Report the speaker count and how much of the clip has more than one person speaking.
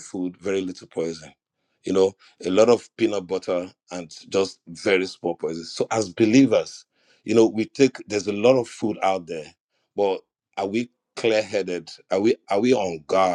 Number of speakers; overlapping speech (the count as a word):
one, no overlap